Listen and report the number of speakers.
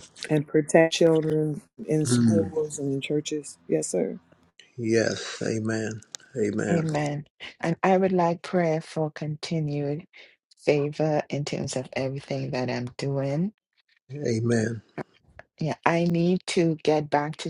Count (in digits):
3